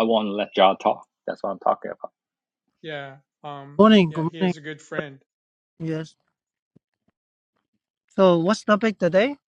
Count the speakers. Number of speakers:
three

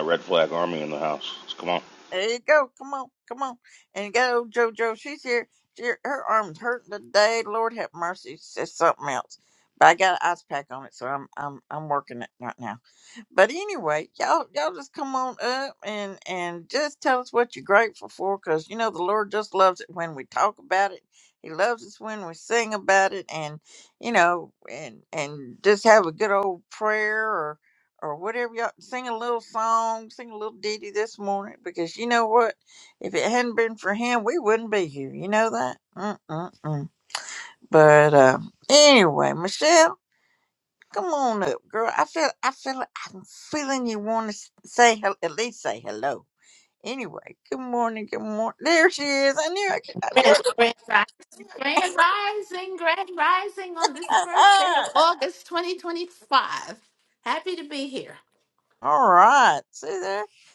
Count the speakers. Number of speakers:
three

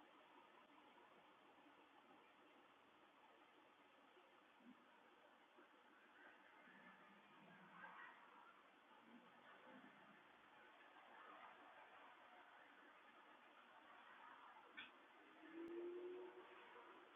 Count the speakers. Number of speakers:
zero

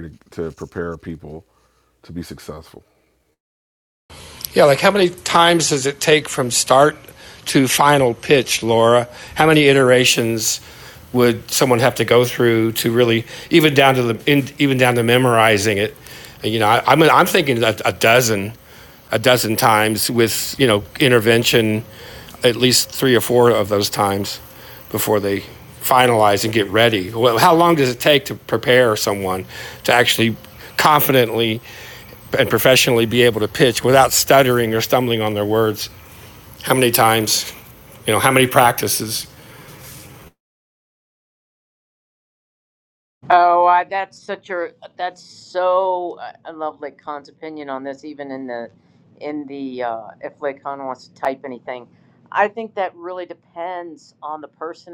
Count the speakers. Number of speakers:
three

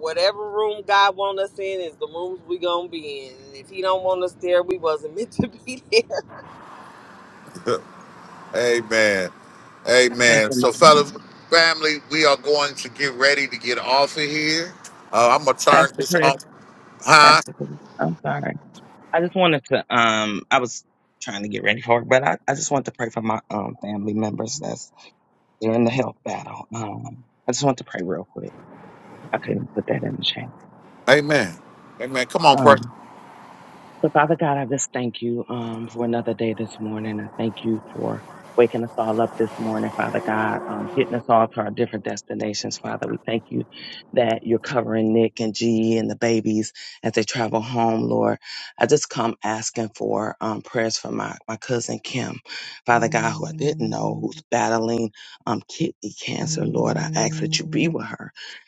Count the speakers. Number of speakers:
three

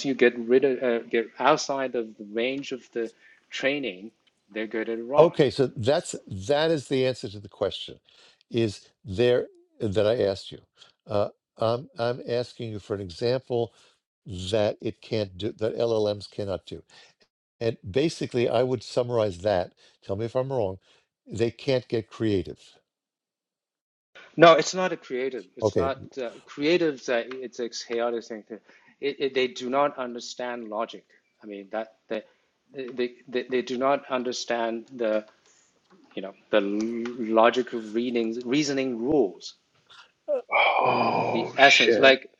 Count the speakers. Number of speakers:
three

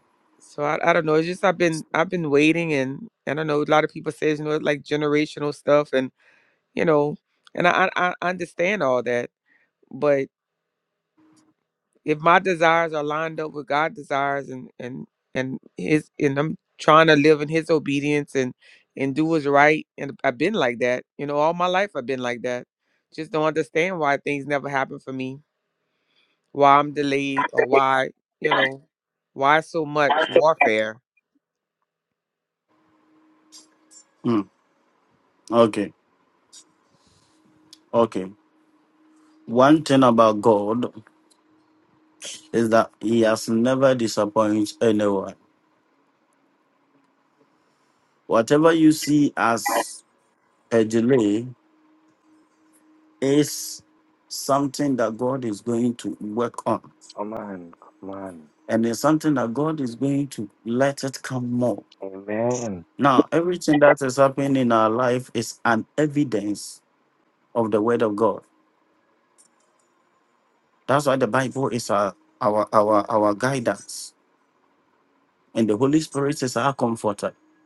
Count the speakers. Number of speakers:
three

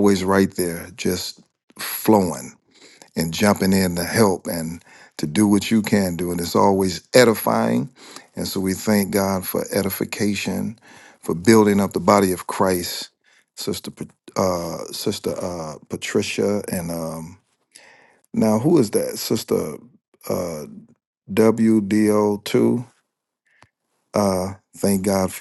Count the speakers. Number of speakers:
one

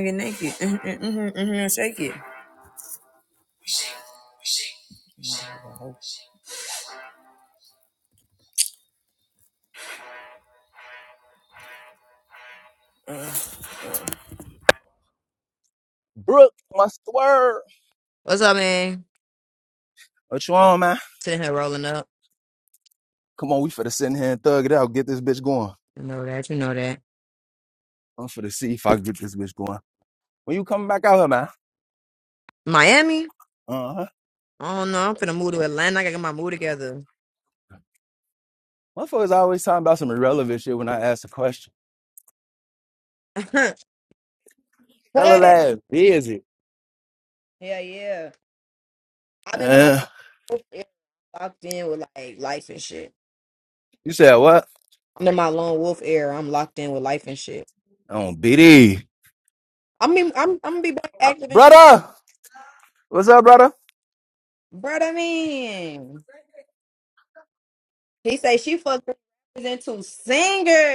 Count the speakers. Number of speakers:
two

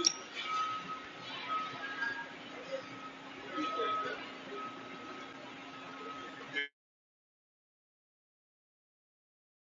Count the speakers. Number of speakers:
zero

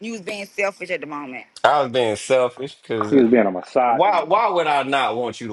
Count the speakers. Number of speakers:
three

